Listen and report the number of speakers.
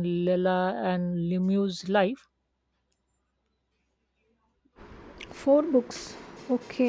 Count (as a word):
two